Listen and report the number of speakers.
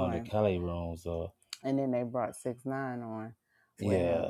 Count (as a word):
two